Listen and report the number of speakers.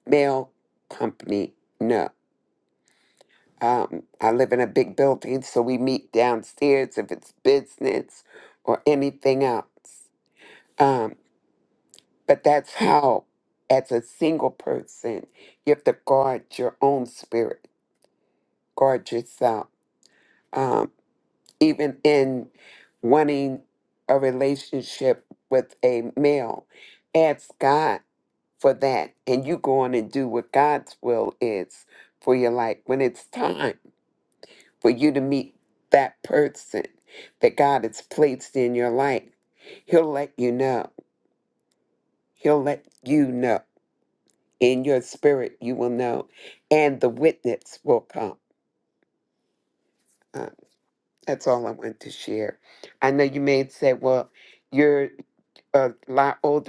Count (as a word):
one